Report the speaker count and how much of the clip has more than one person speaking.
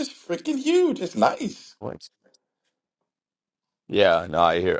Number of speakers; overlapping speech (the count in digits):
2, no overlap